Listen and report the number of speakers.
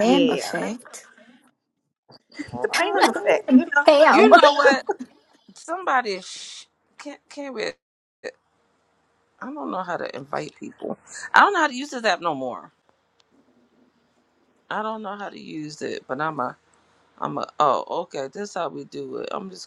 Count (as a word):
three